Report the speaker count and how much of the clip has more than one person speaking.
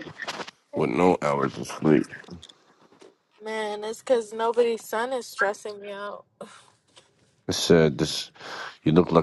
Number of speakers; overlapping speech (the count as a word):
two, about 5%